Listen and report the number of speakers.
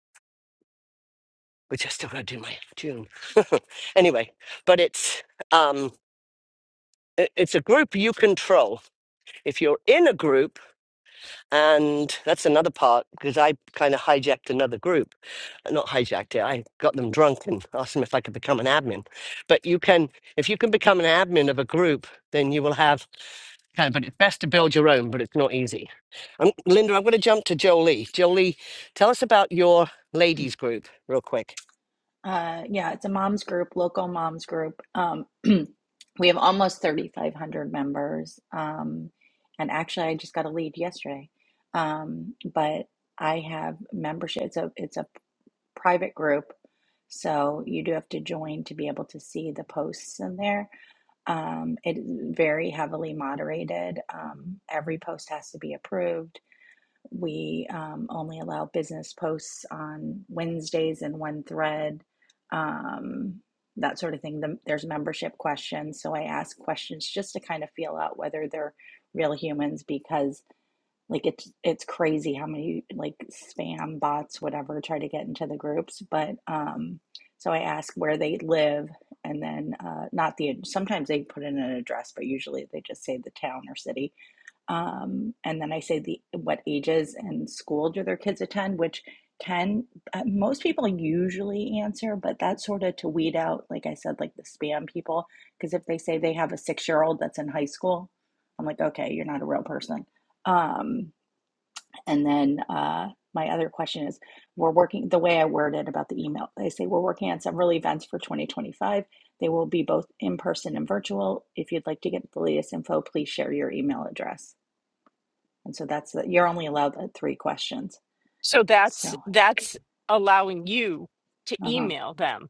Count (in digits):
3